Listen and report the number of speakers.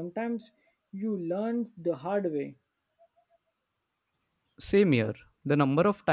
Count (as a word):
two